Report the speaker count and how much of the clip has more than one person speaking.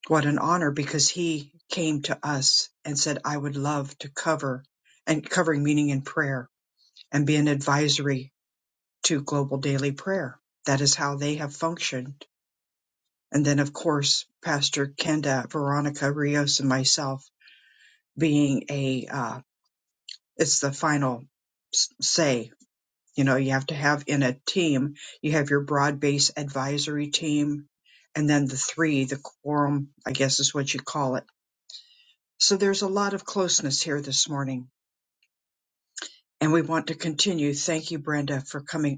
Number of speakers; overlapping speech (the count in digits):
1, no overlap